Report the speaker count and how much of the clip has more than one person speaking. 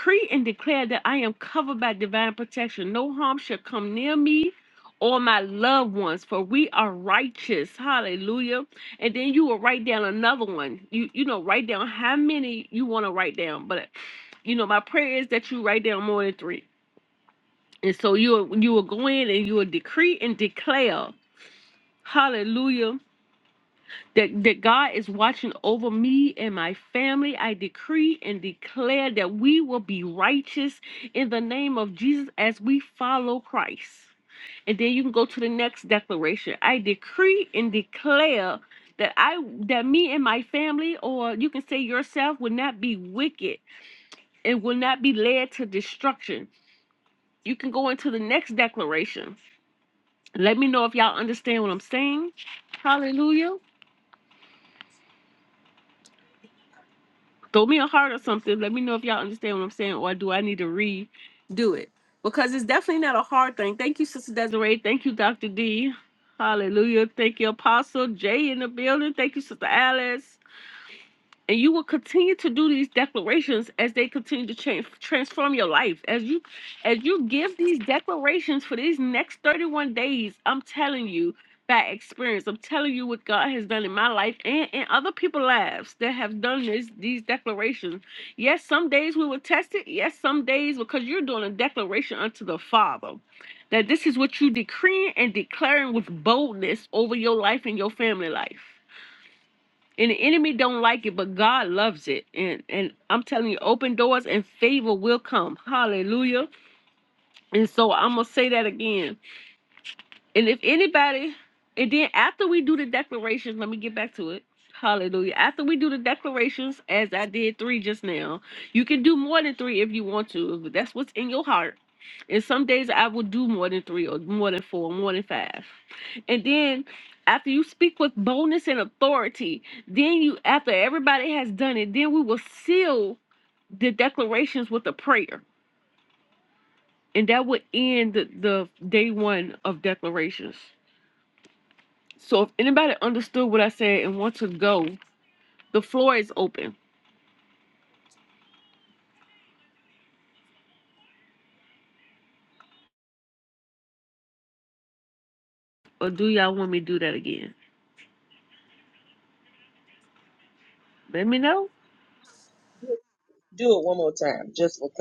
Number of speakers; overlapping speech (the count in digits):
2, no overlap